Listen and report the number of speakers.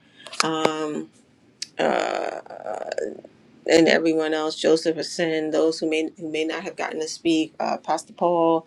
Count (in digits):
1